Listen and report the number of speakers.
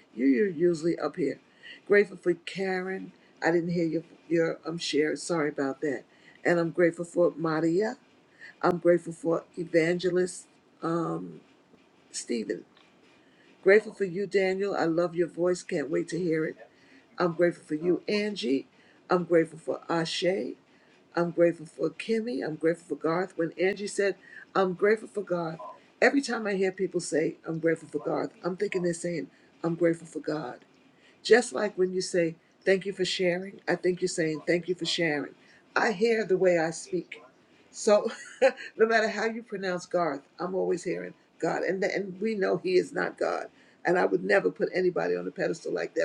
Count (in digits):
1